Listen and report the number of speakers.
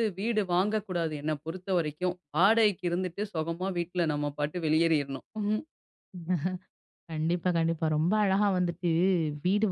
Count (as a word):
two